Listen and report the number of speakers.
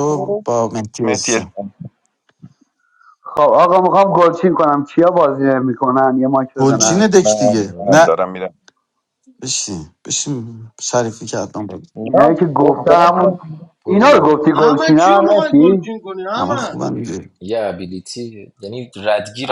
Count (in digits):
5